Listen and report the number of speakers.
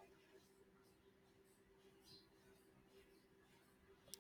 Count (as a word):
zero